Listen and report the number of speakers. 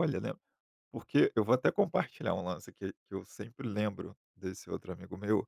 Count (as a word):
one